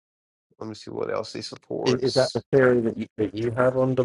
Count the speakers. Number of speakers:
two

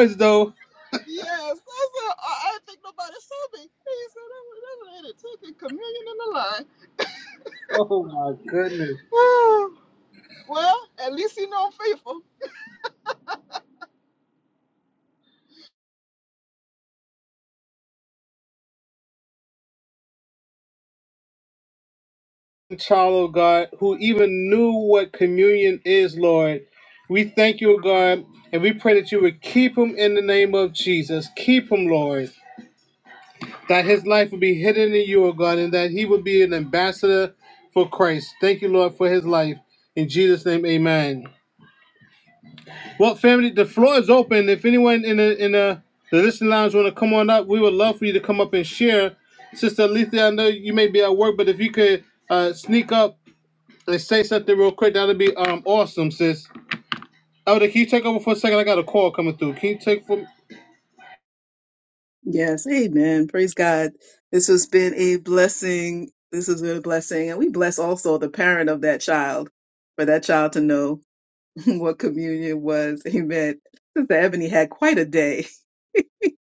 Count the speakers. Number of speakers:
three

